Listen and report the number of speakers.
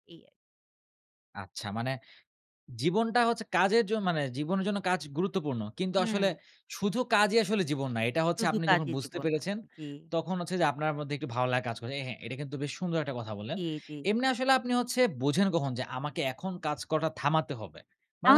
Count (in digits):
2